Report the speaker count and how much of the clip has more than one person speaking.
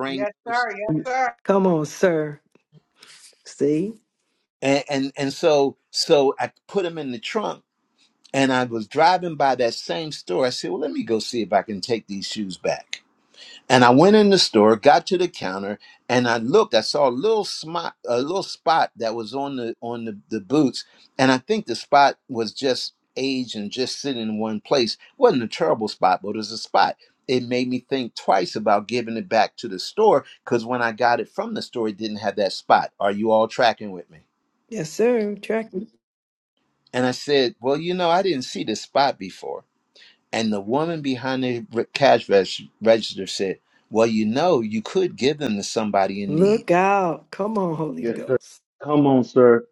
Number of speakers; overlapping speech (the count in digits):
4, about 3%